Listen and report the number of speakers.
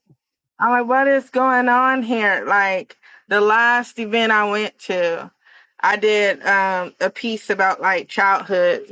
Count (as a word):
one